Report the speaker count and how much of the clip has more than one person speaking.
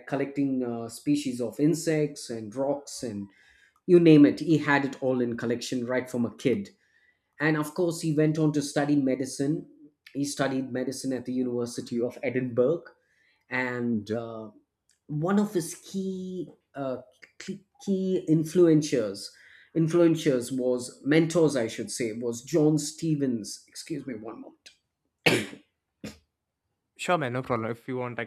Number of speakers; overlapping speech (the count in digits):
2, no overlap